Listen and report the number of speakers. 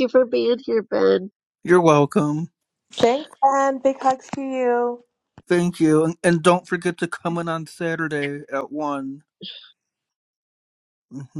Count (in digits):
3